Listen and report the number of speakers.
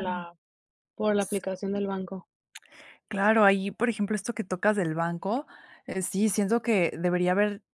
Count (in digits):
2